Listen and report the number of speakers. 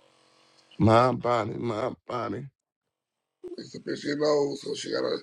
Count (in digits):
2